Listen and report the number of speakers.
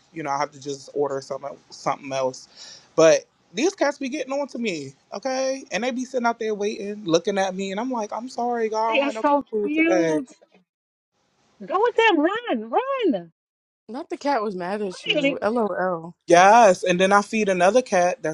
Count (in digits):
3